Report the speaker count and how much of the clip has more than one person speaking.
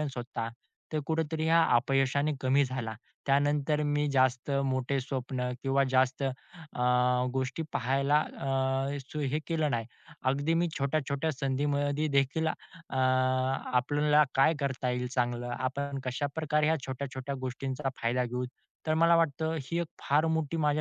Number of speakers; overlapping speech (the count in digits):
1, no overlap